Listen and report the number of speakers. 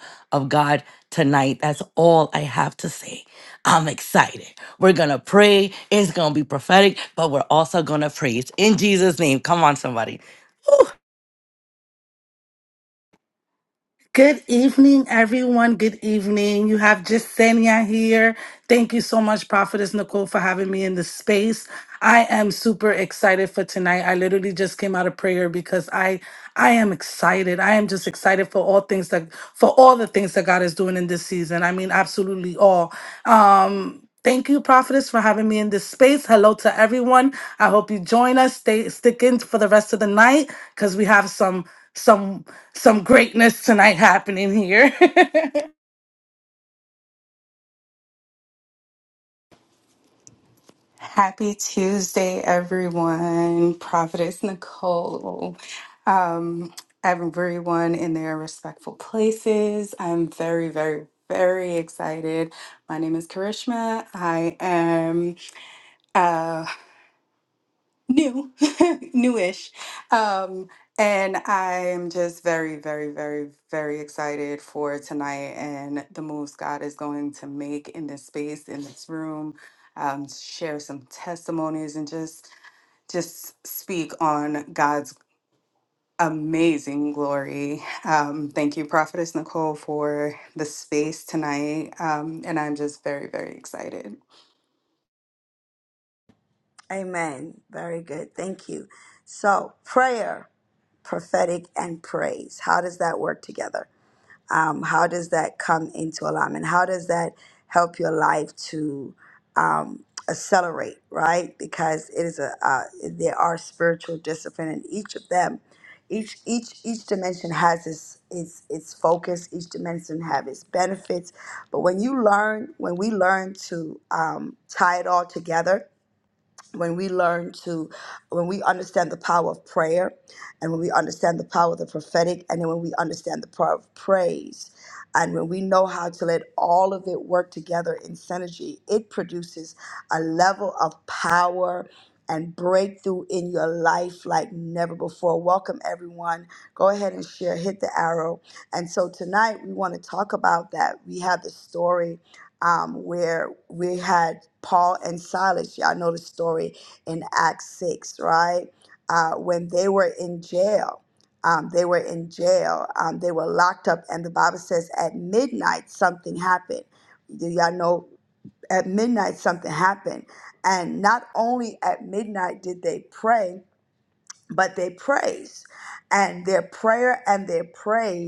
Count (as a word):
four